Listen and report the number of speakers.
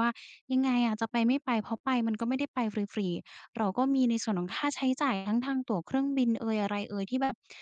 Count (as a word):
one